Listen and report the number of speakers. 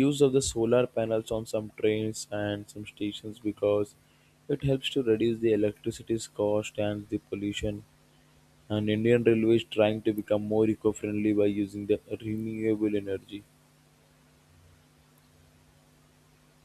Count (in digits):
1